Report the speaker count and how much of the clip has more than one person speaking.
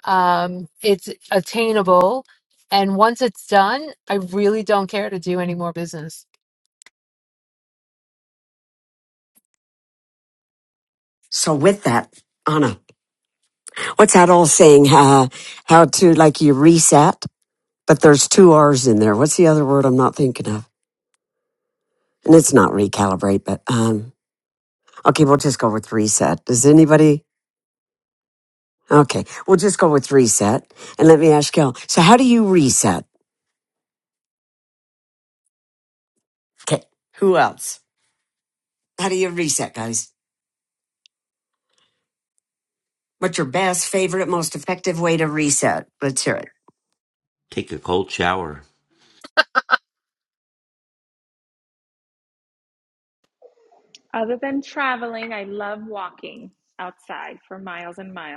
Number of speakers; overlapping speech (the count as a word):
four, no overlap